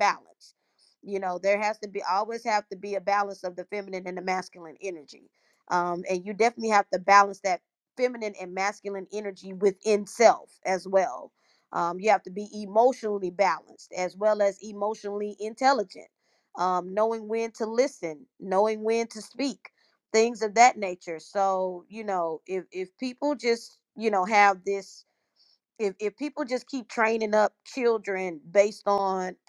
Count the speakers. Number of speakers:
1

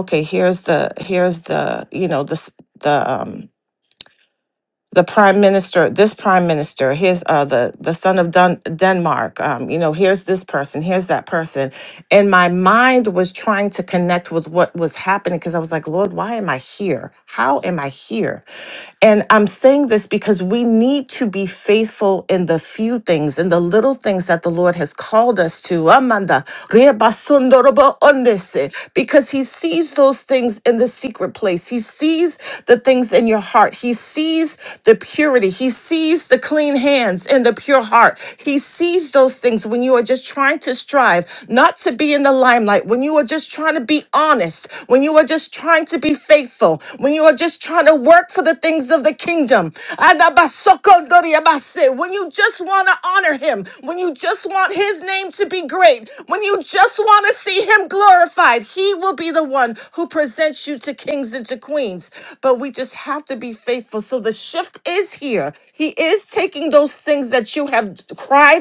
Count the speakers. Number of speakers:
1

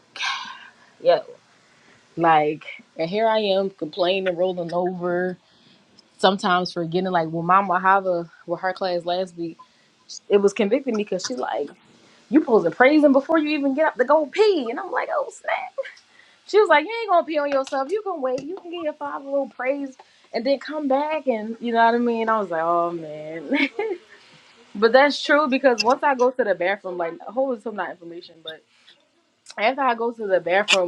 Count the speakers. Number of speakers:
1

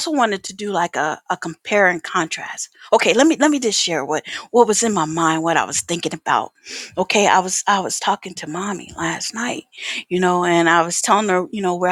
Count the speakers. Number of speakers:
1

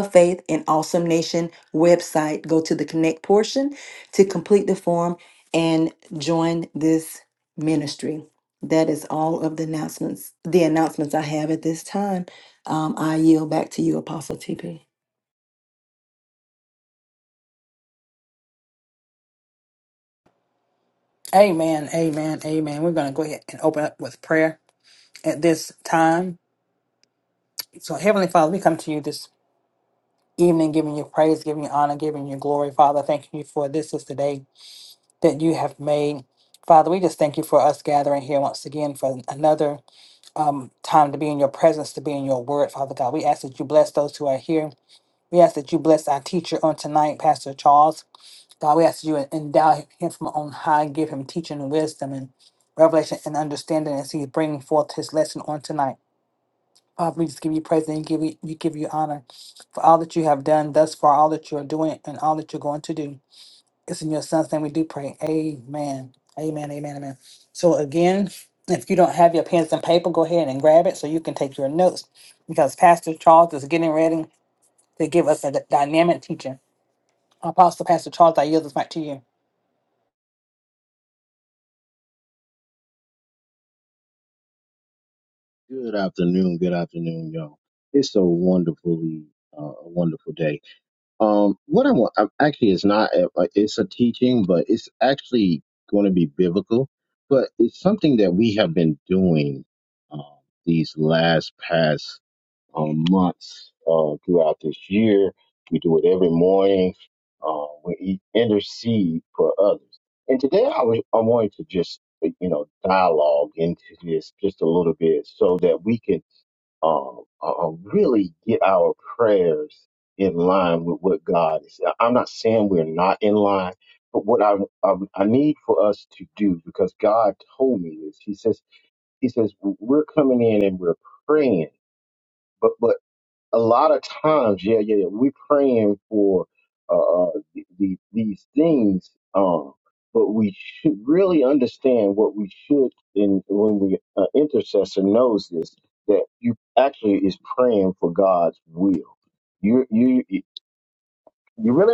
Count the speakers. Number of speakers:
3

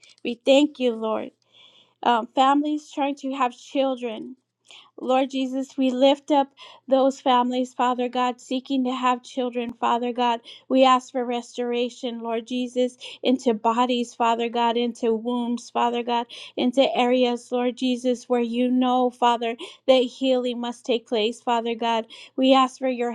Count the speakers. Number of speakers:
1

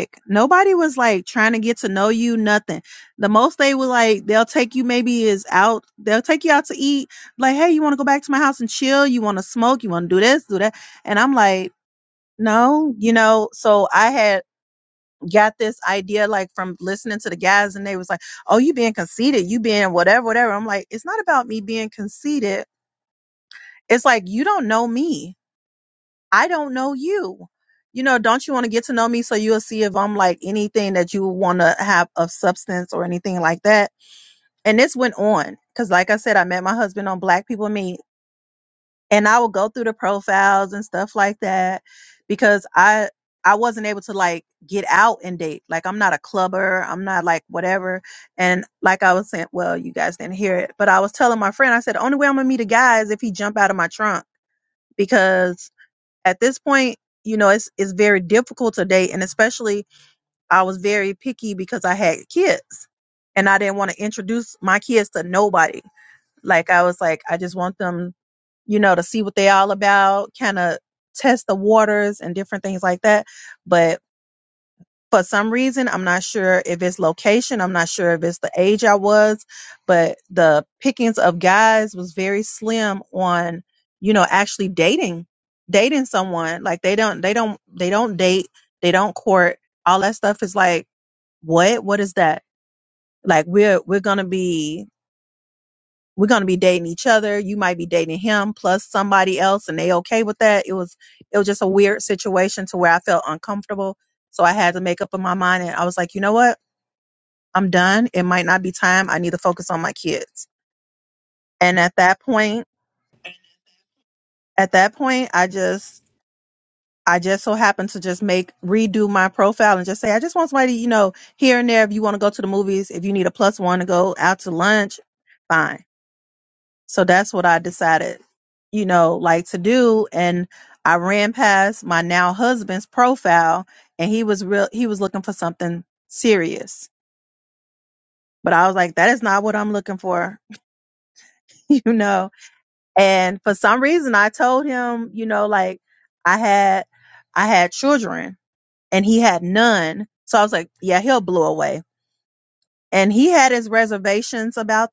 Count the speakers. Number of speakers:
1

